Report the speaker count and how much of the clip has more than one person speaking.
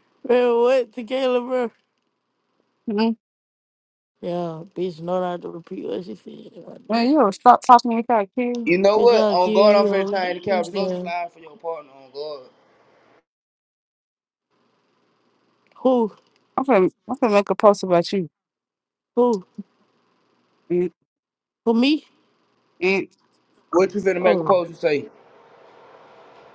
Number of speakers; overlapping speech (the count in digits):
3, about 9%